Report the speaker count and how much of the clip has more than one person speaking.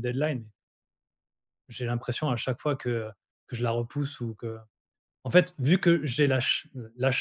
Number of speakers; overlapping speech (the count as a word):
one, no overlap